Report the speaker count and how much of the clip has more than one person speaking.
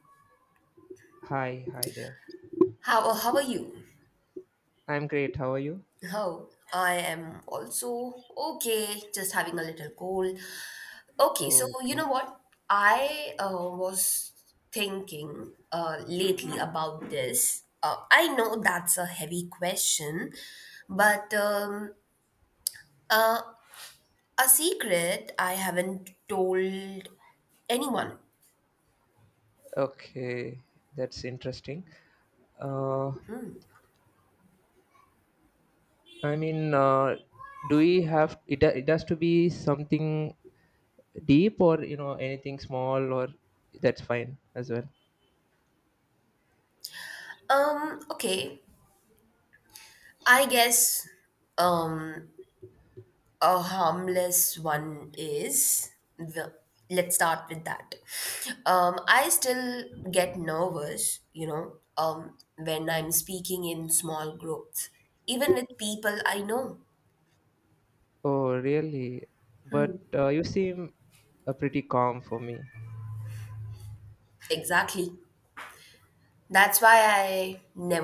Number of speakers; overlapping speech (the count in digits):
2, about 1%